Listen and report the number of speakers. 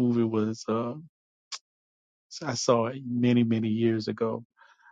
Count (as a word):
one